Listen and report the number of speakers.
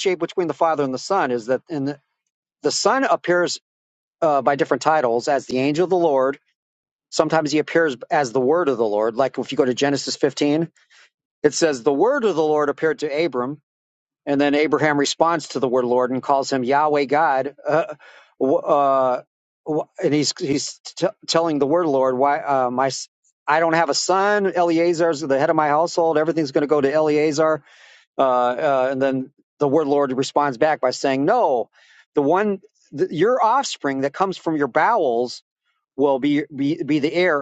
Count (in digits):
1